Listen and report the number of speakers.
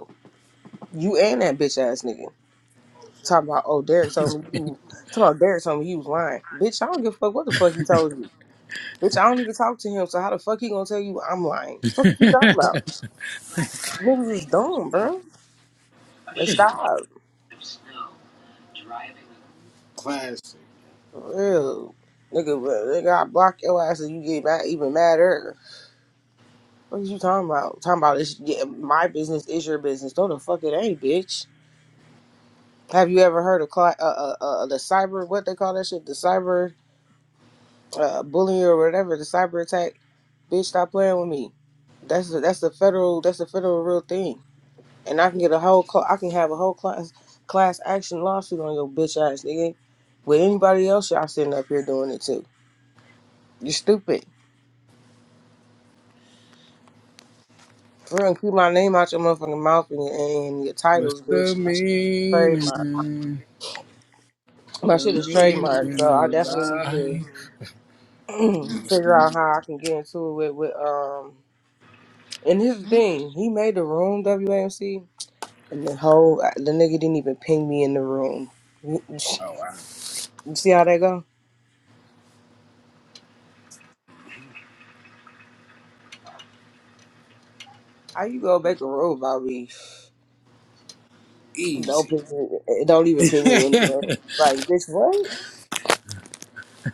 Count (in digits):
2